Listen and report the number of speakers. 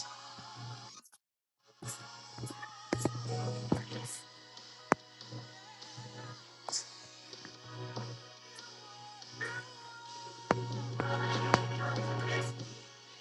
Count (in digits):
0